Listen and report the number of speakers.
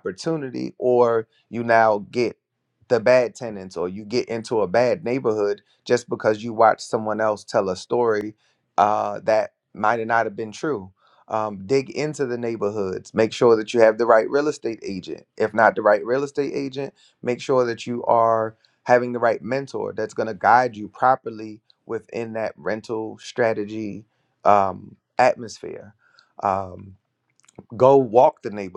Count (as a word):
one